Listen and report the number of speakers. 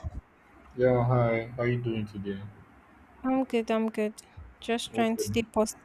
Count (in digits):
2